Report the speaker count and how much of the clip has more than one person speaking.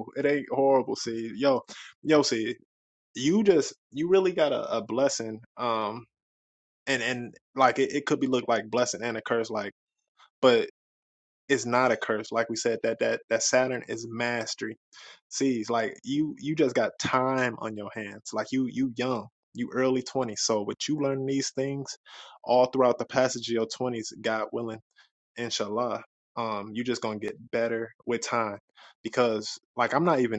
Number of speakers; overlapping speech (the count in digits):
1, no overlap